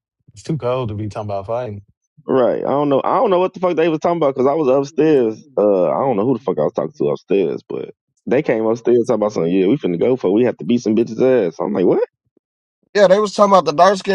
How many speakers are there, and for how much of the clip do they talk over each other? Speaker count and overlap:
three, under 1%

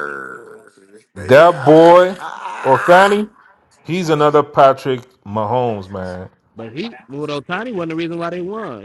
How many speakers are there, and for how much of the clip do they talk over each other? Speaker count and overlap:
three, about 10%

